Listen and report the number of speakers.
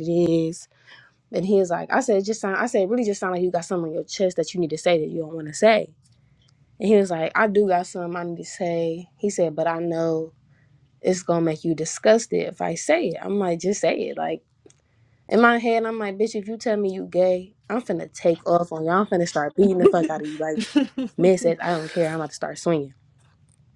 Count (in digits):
1